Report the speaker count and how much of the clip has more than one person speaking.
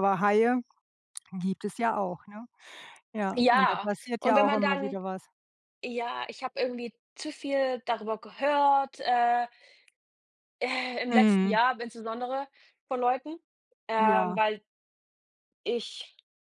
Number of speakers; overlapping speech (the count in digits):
2, about 13%